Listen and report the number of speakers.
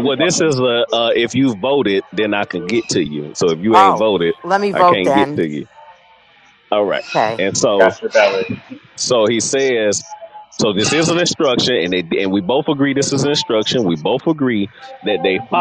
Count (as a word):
three